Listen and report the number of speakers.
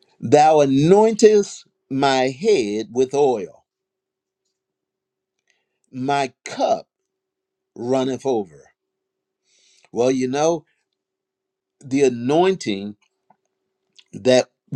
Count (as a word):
one